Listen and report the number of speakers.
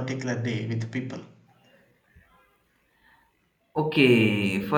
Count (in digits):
2